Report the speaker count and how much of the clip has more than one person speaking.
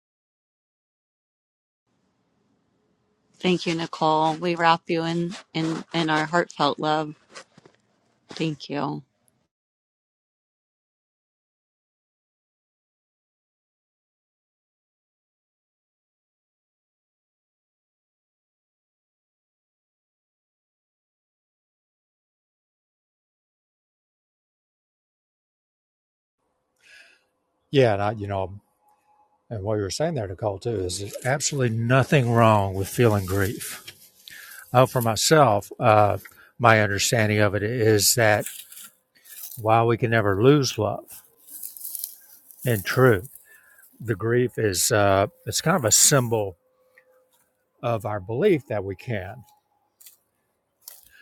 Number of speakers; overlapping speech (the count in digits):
2, no overlap